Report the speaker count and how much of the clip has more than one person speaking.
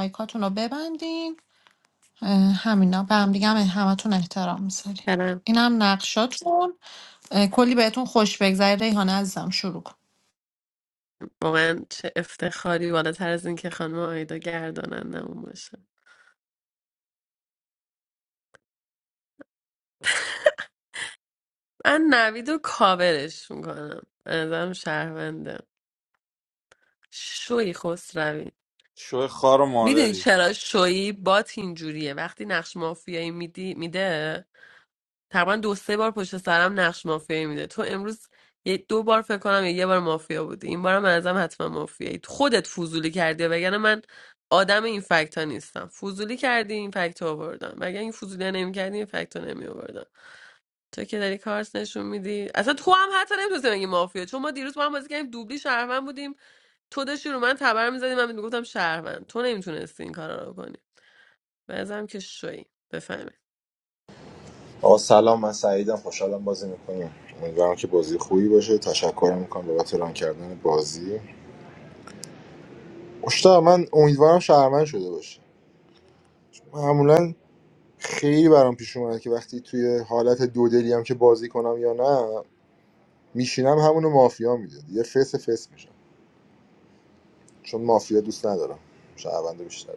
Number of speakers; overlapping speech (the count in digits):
4, under 1%